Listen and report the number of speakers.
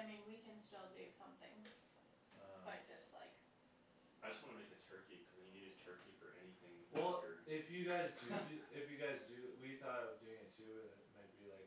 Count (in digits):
3